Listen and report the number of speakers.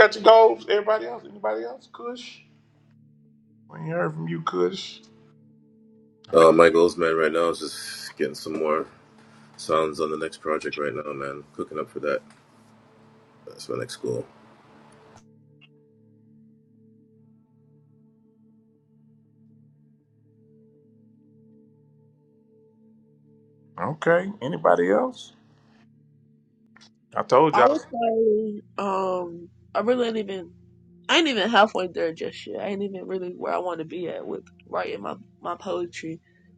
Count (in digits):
3